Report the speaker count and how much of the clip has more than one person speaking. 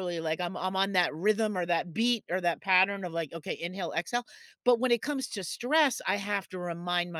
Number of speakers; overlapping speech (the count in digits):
1, no overlap